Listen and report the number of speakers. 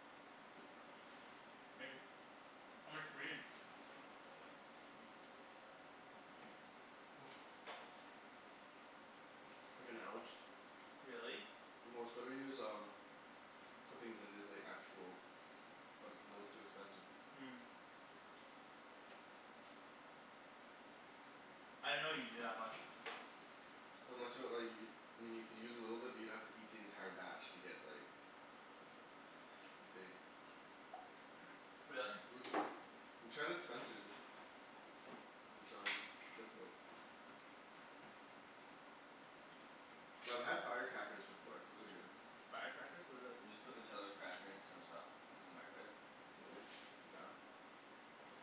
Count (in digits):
2